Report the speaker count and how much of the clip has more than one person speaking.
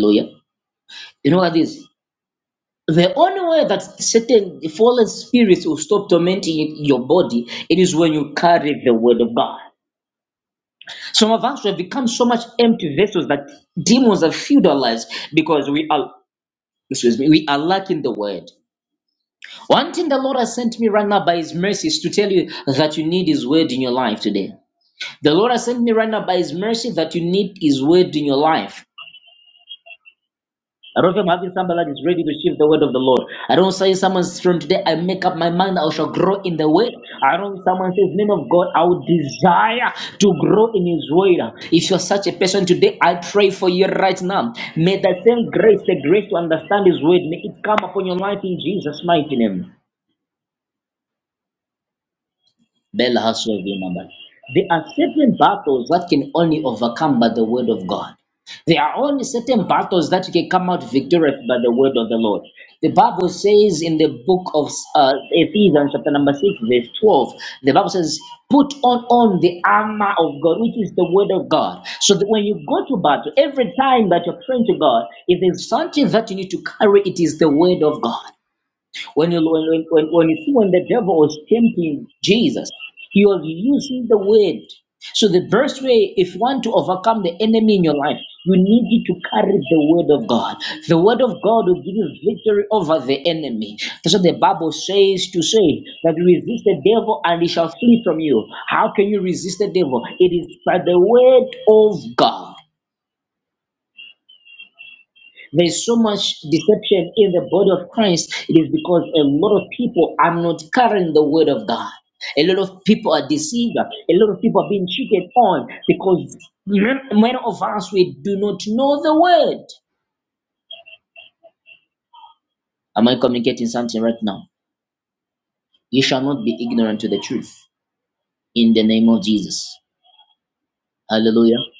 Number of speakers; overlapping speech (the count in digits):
1, no overlap